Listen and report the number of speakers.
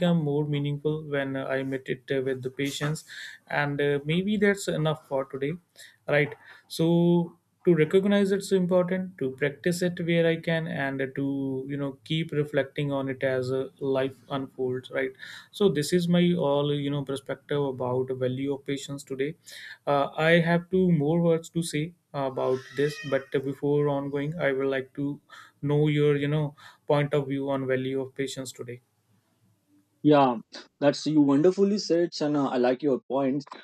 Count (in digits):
2